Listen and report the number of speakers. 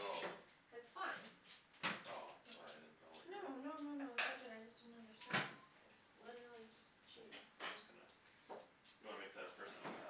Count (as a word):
two